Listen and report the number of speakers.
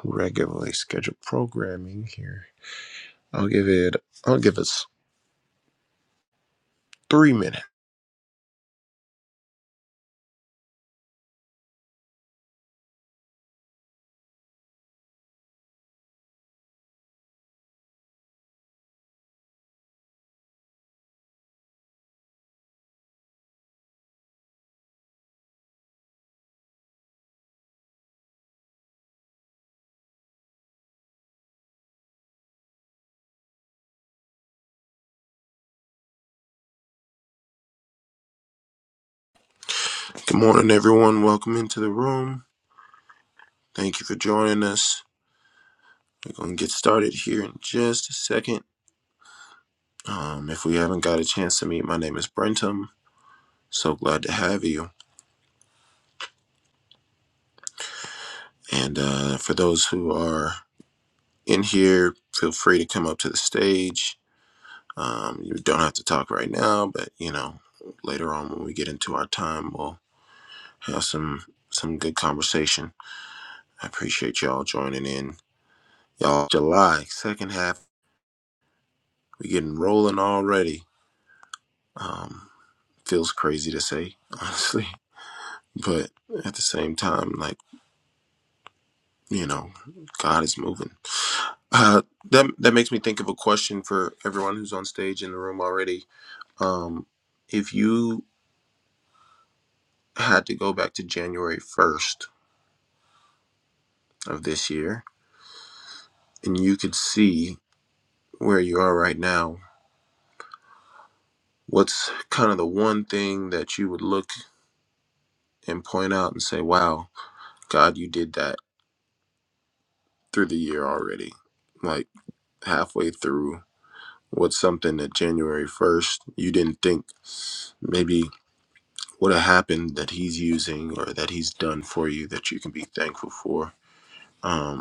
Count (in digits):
1